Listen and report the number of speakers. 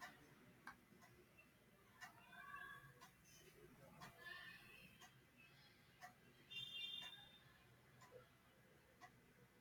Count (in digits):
0